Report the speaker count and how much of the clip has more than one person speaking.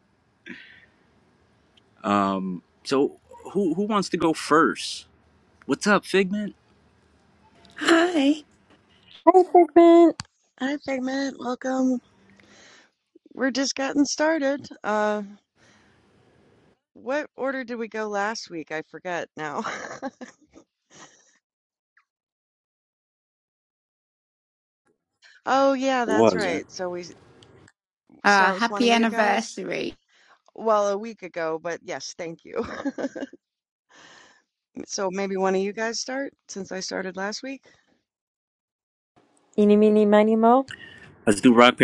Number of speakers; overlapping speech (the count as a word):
four, about 4%